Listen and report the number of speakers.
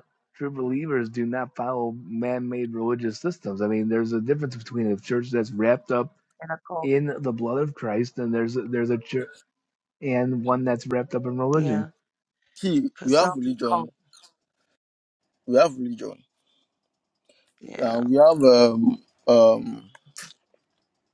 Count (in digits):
3